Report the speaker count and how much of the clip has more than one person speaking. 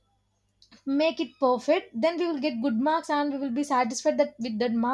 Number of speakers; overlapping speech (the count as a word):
one, no overlap